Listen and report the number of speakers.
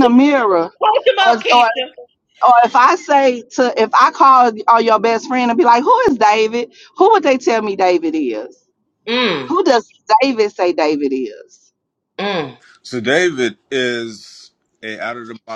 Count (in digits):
3